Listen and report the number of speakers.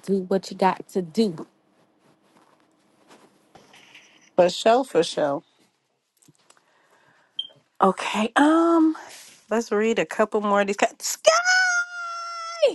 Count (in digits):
2